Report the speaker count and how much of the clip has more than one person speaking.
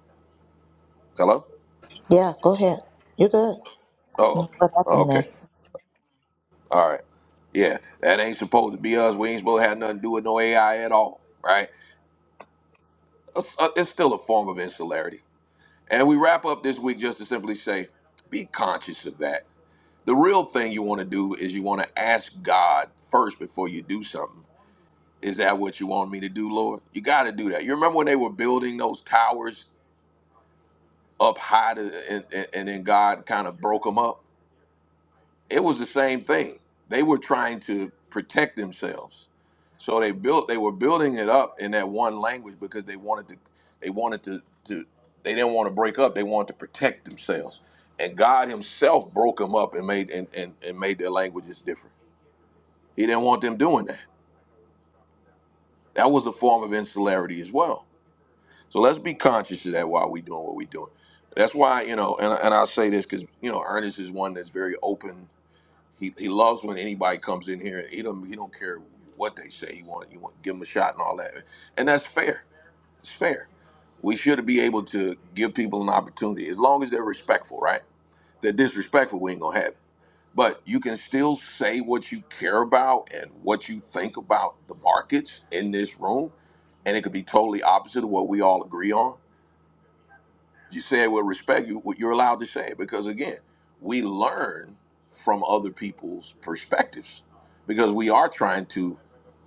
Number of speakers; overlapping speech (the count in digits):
2, about 1%